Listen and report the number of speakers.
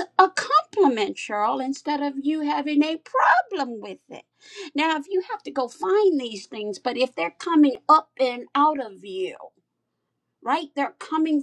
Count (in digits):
1